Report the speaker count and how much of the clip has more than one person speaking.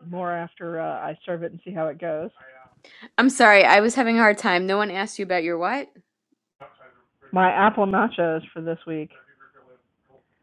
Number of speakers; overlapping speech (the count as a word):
two, no overlap